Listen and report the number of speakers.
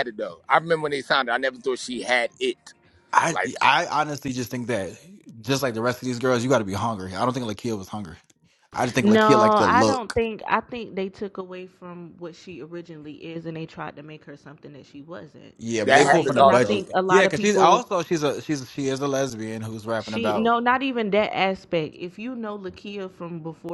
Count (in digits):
3